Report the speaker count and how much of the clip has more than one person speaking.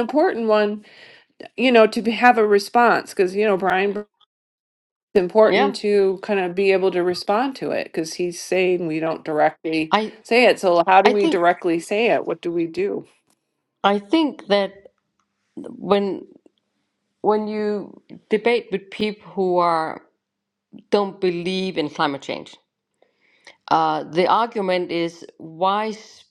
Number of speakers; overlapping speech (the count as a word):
two, about 3%